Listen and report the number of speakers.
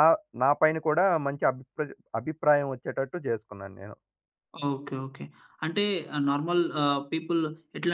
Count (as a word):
two